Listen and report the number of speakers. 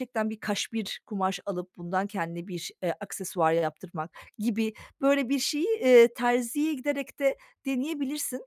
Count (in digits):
1